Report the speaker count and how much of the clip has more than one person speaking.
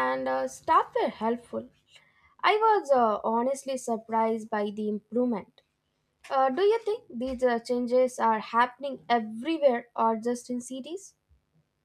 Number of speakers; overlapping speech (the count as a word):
one, no overlap